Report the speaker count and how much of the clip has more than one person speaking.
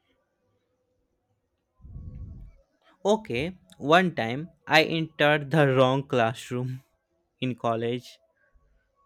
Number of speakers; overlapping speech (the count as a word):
one, no overlap